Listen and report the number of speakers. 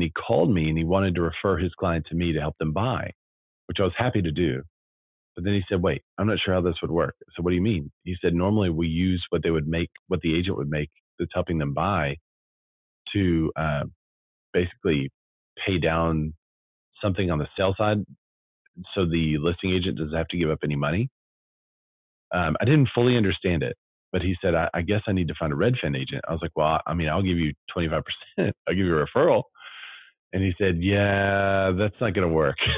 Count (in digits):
1